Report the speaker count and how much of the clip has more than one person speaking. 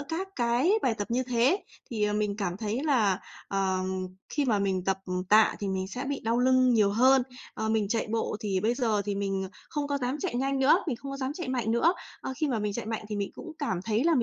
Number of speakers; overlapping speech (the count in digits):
1, no overlap